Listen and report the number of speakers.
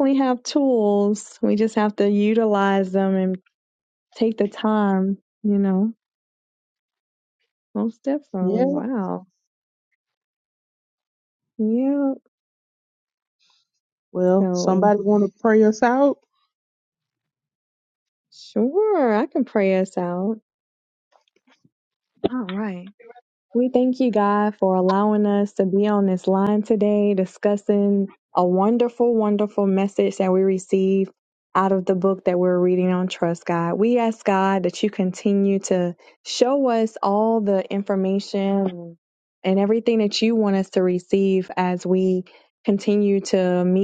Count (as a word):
two